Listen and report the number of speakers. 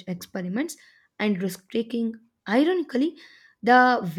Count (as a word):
one